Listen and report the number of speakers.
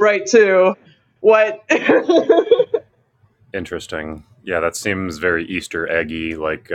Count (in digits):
2